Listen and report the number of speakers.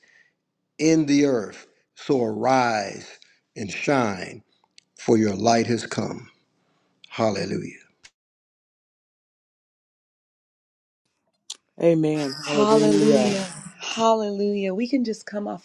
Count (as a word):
three